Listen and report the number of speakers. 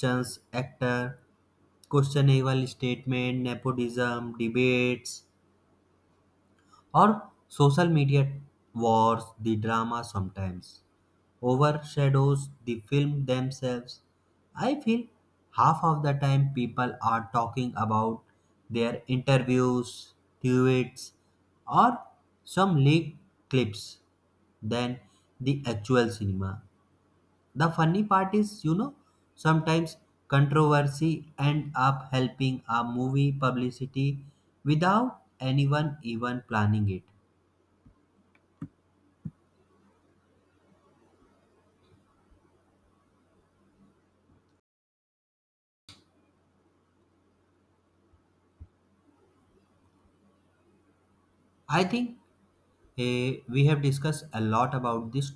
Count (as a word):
one